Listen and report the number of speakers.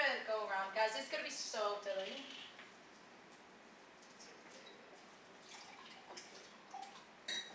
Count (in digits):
1